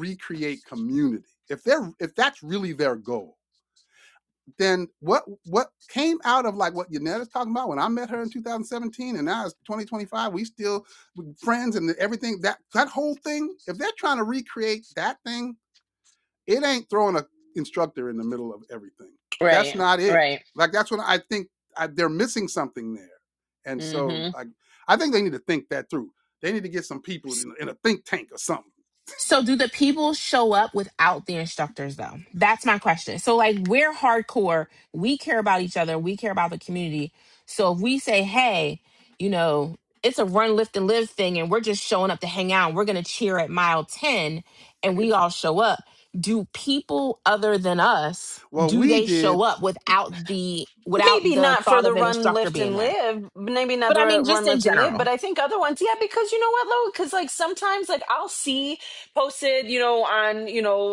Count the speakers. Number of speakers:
three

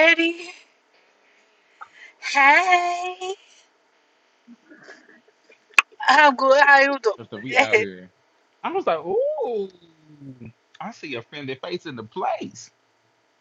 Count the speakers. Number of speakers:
two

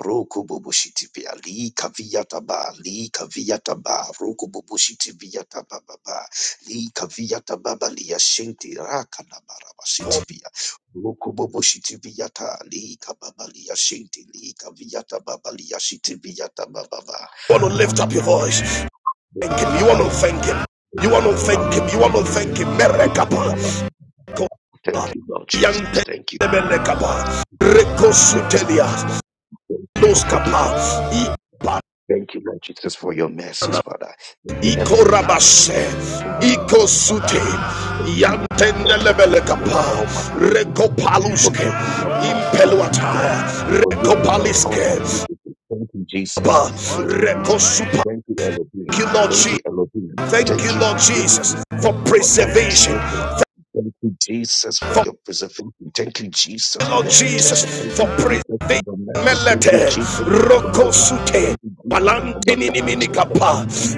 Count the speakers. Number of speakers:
two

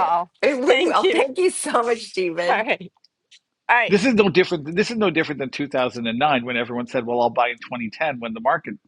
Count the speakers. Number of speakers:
three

